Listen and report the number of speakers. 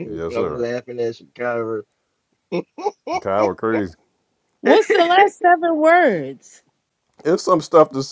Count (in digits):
3